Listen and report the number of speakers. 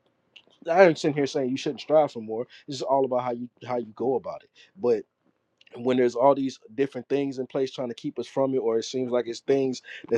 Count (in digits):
1